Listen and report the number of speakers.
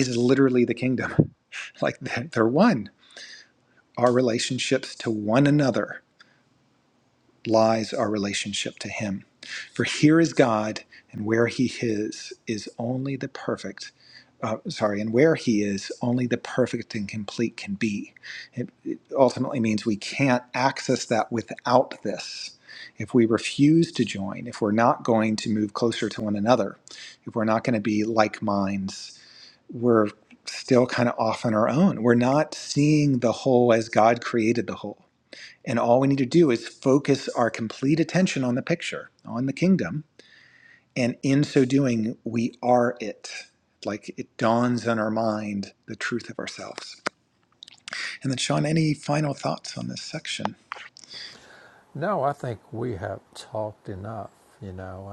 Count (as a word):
two